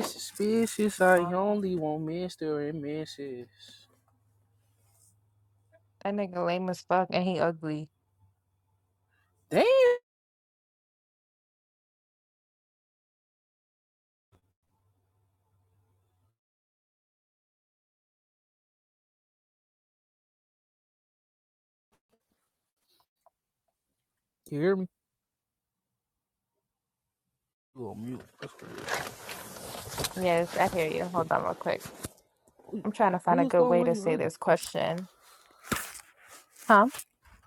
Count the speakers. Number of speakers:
two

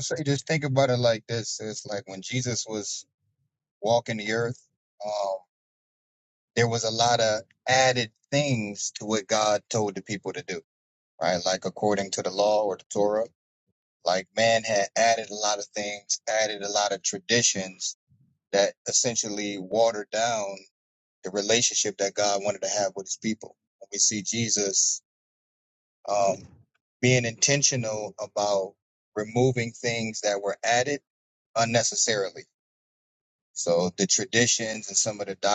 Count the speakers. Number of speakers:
one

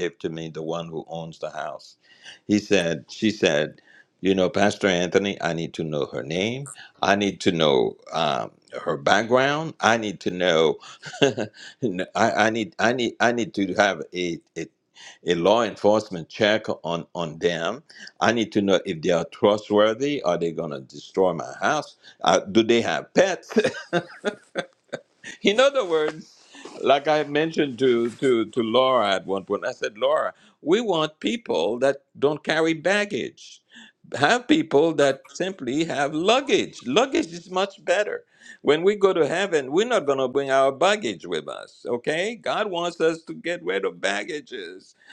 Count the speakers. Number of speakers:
one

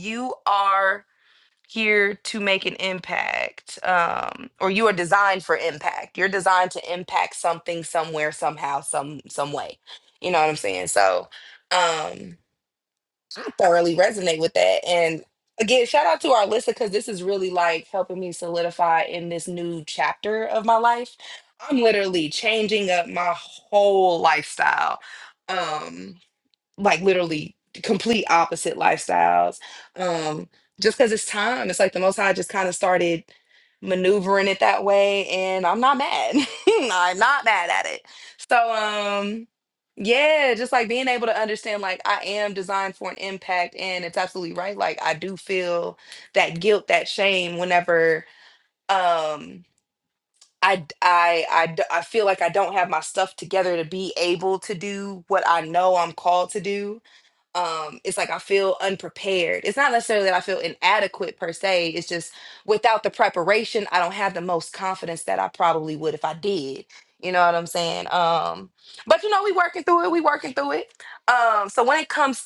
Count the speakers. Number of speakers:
one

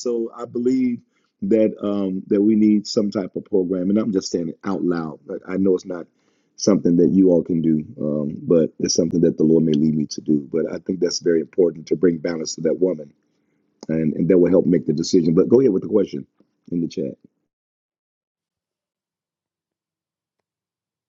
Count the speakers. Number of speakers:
one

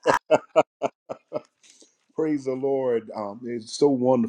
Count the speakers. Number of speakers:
one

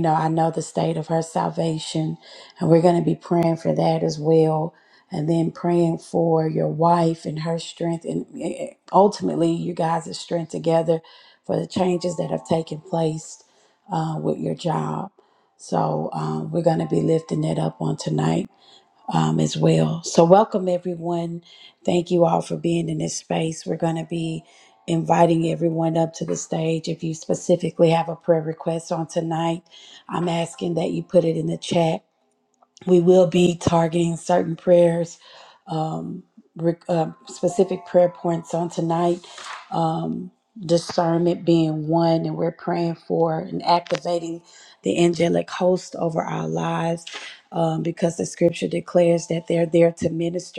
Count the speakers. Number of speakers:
one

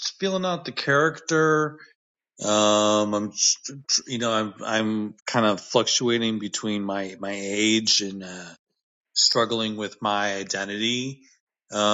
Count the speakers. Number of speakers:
one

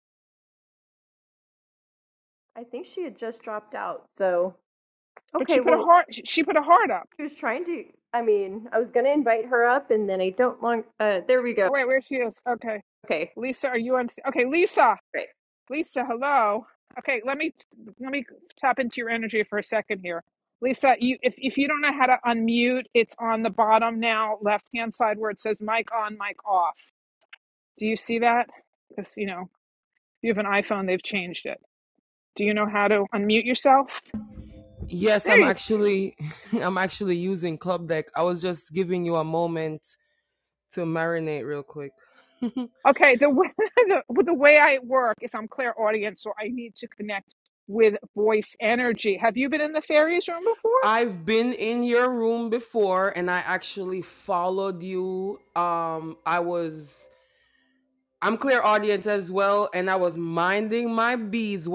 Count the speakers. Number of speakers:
three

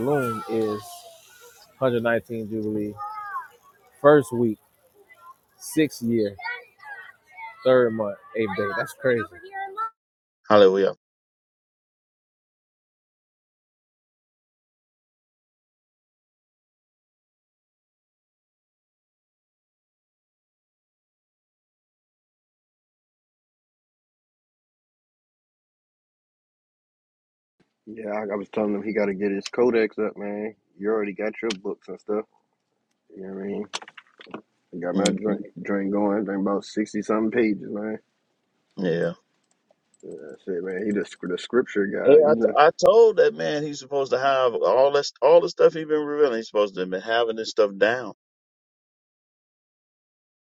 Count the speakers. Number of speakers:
three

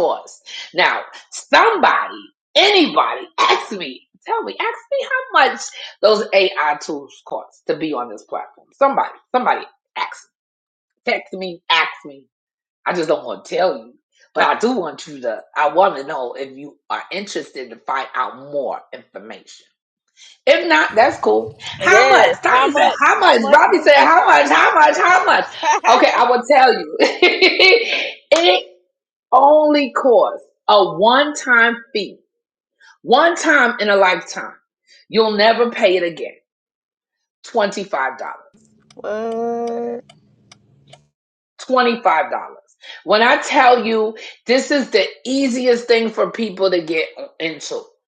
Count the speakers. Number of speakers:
two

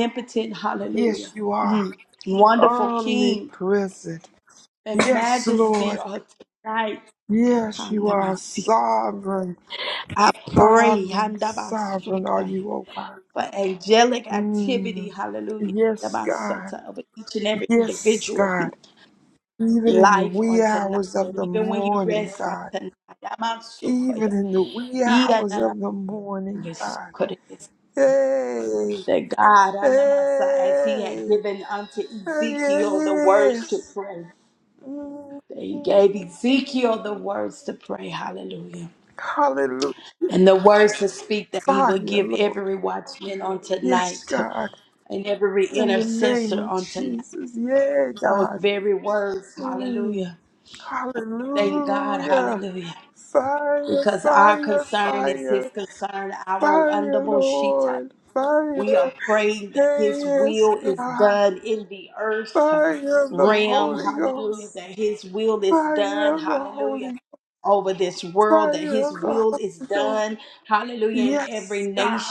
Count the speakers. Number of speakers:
two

